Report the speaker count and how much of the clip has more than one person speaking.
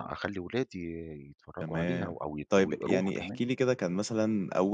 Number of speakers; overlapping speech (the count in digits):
2, about 30%